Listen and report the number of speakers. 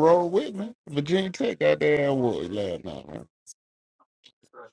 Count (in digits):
1